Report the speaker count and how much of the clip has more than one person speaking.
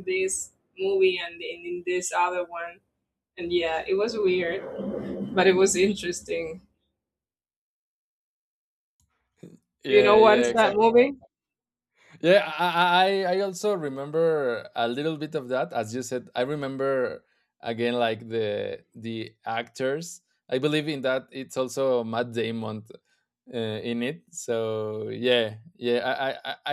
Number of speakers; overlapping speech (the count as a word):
two, about 4%